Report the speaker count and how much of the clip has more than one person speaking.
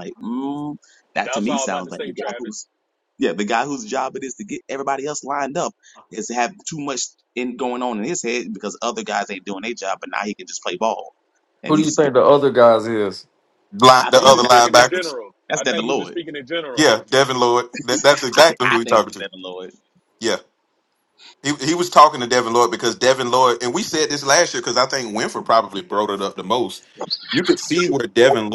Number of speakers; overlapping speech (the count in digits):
4, about 16%